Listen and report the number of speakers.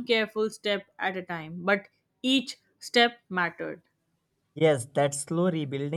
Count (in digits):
2